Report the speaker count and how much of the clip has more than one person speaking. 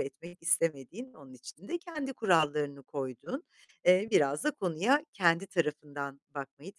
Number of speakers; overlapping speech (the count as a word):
one, no overlap